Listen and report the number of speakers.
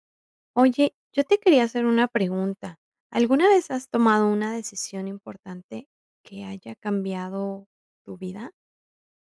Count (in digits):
1